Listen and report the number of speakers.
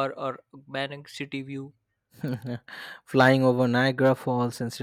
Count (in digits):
2